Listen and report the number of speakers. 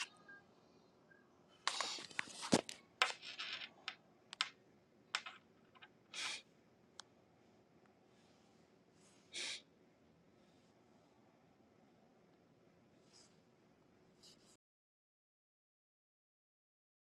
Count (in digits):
0